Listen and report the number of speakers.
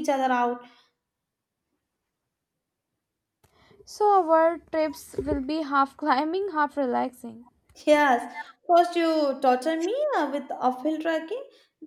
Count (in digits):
2